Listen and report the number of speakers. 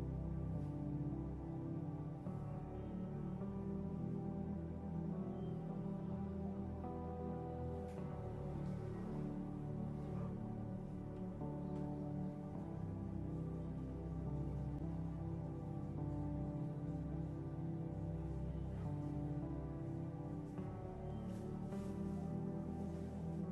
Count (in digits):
0